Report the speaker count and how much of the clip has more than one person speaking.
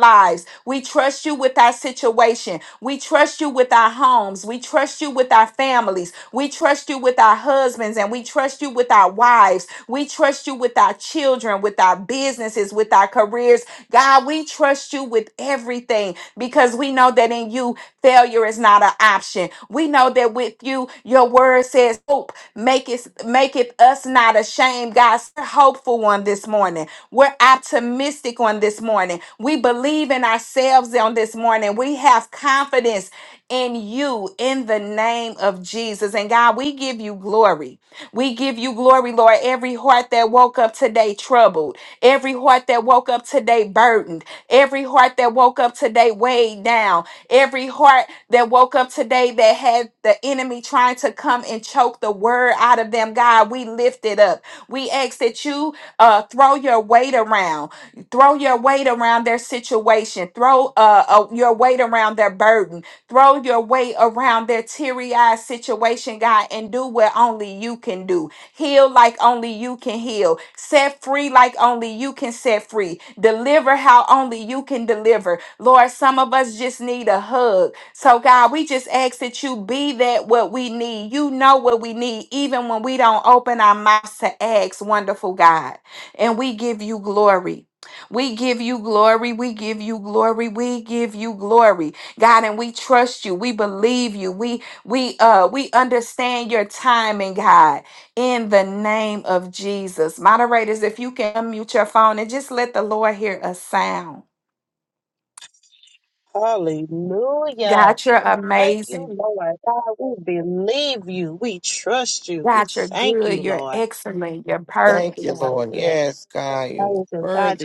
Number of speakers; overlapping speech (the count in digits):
3, about 3%